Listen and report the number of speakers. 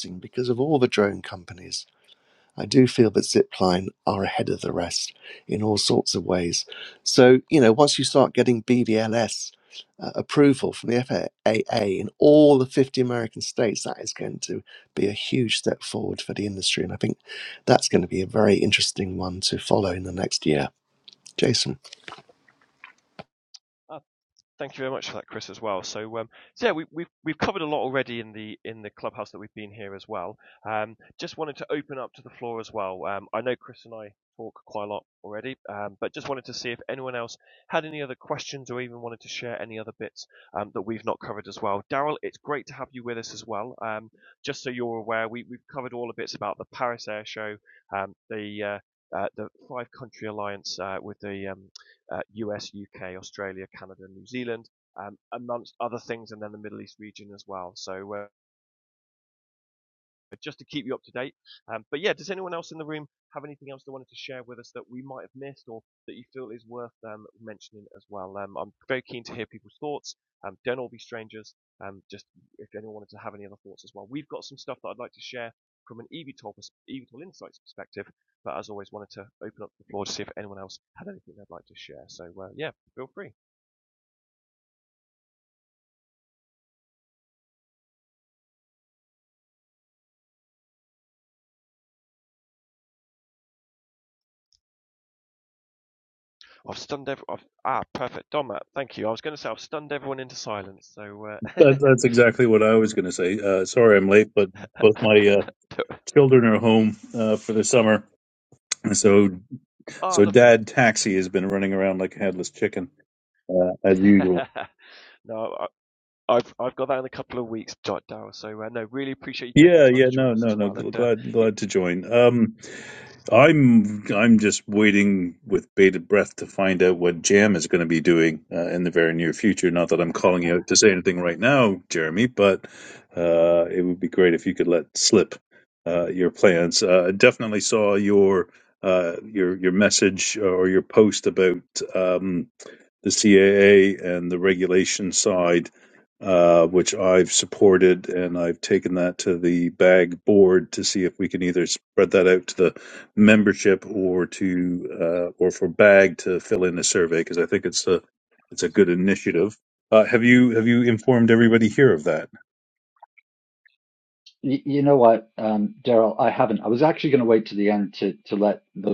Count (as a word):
four